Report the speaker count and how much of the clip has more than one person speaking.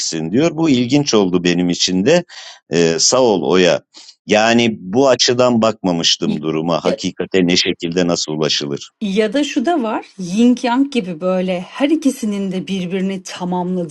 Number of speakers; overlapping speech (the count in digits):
2, about 2%